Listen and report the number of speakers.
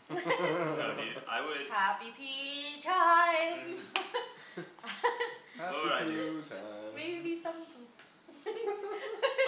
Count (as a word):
three